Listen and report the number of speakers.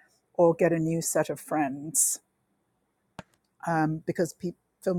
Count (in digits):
1